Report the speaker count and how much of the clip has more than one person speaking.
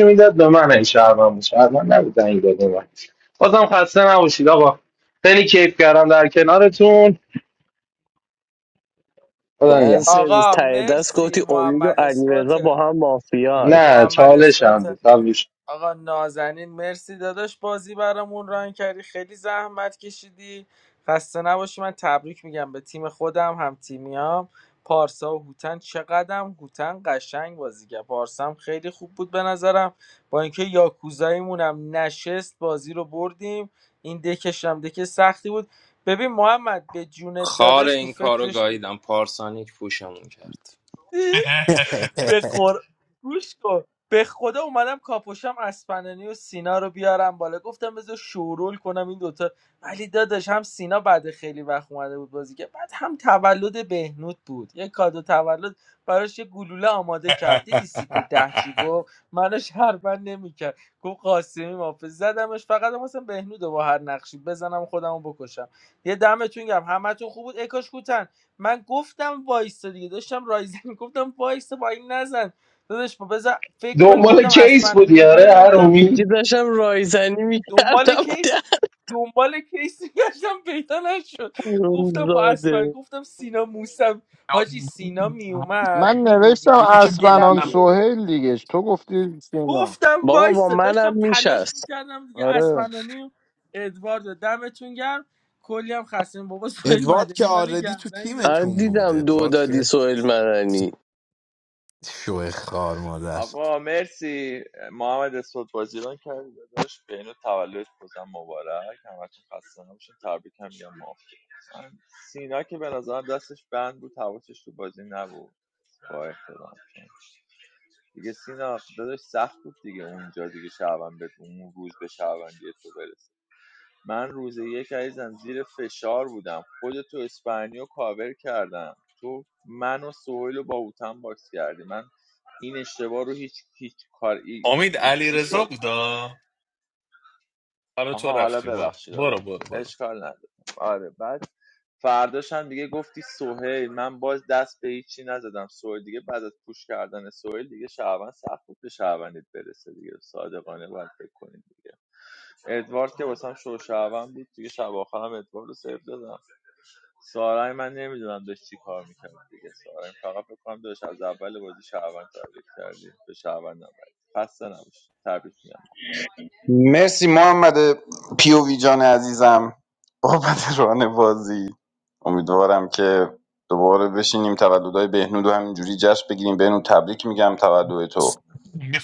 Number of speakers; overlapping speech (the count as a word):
nine, about 10%